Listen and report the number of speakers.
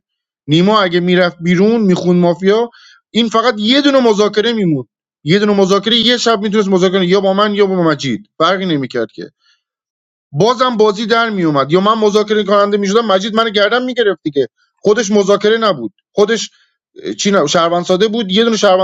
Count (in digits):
1